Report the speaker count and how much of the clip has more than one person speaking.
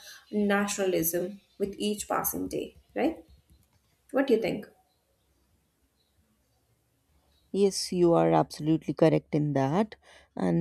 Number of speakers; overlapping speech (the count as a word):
two, no overlap